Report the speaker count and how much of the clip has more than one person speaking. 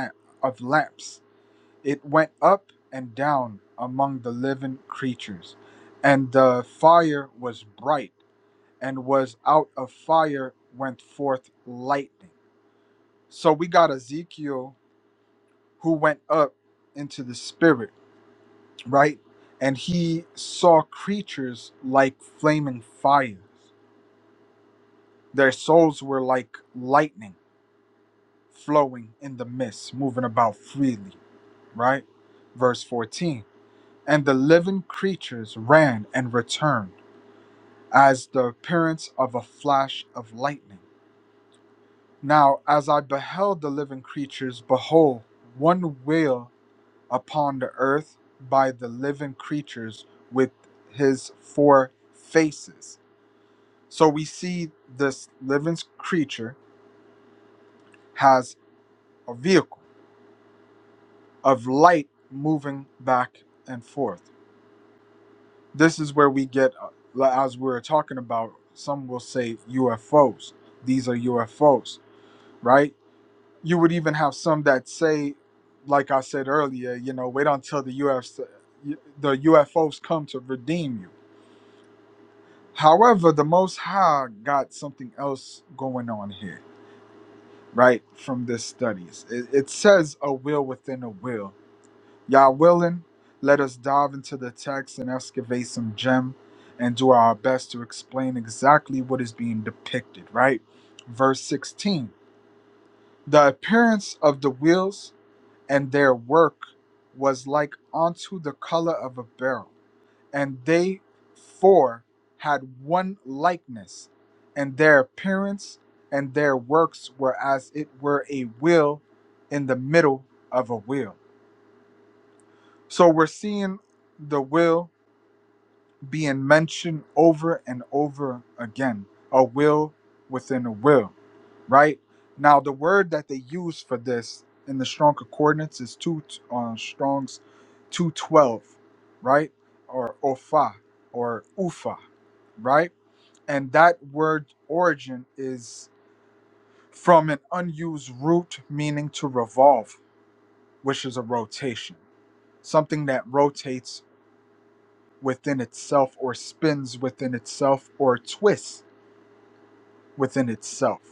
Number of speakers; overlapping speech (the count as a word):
one, no overlap